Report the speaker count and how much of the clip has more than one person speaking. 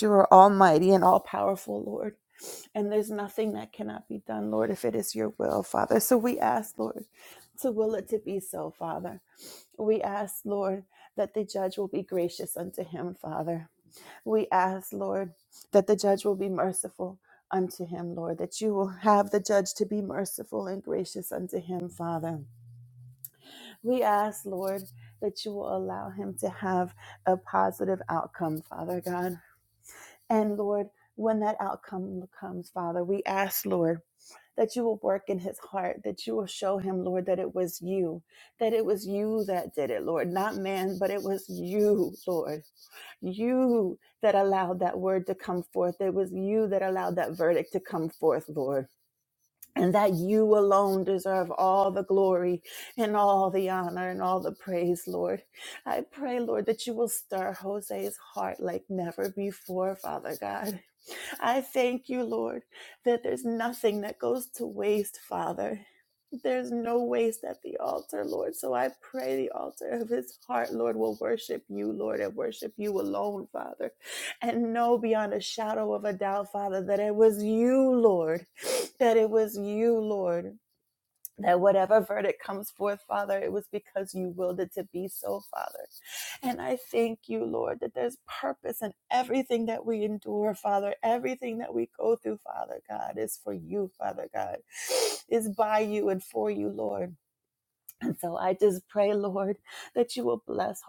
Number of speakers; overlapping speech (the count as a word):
one, no overlap